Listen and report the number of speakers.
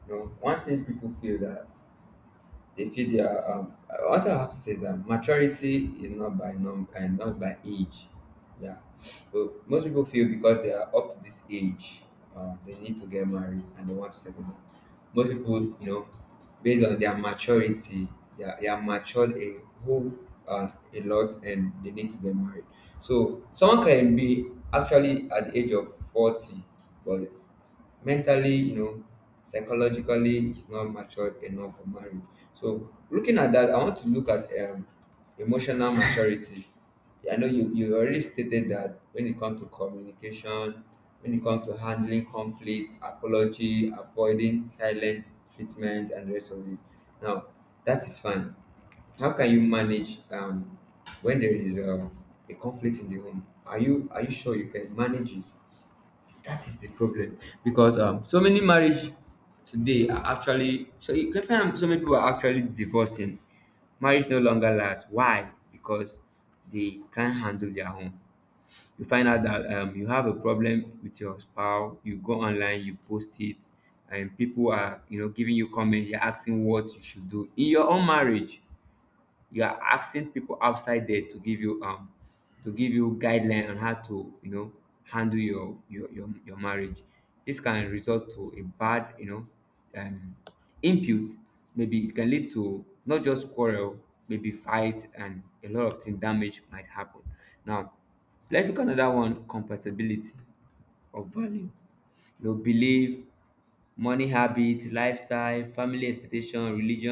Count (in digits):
1